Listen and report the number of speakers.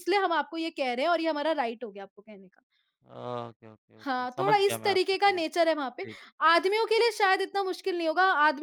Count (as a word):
two